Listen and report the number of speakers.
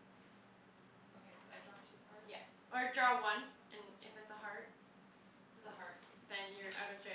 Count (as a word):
two